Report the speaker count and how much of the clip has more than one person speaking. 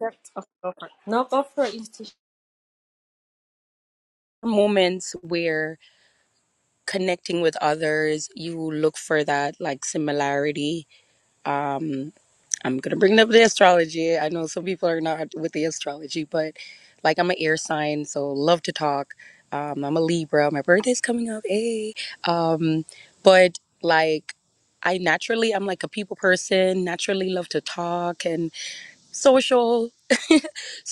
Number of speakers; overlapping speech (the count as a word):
two, no overlap